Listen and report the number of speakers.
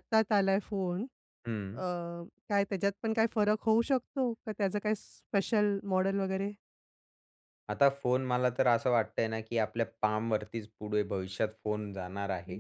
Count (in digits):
2